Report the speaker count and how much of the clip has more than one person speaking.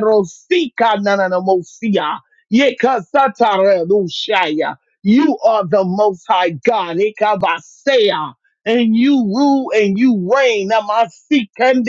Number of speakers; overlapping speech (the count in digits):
1, no overlap